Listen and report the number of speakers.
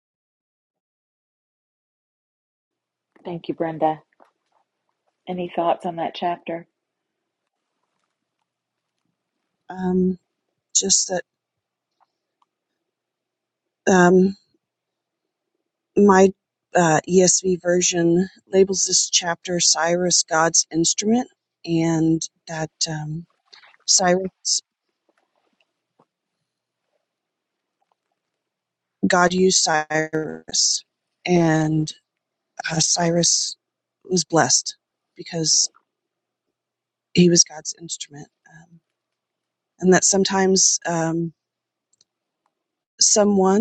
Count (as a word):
two